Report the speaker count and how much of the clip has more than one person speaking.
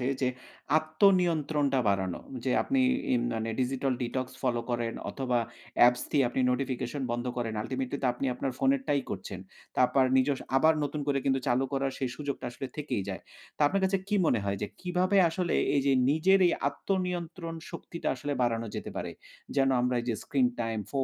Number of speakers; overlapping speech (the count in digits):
1, no overlap